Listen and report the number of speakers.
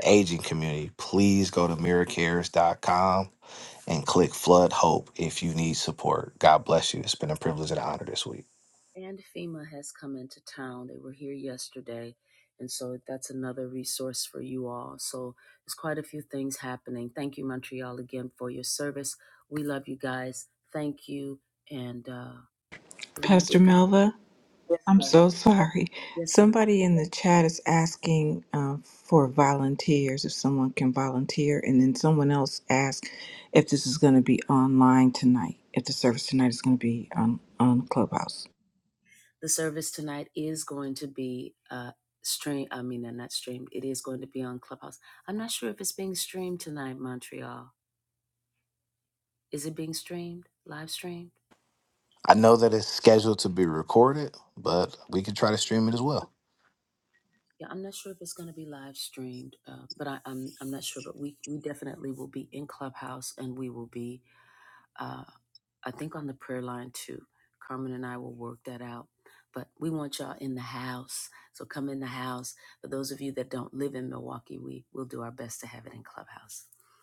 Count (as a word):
three